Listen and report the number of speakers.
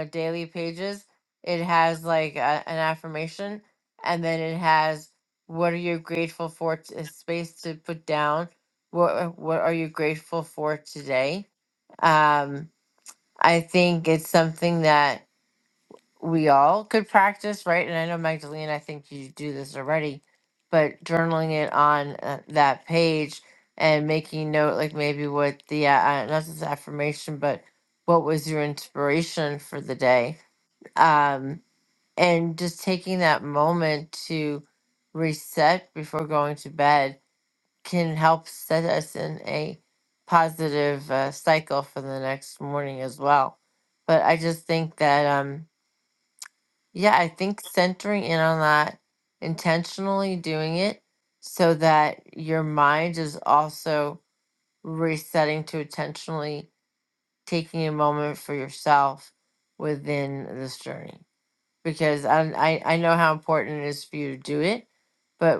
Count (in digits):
1